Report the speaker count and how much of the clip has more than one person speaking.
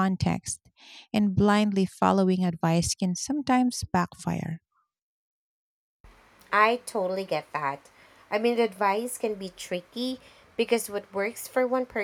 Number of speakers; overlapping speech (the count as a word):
two, no overlap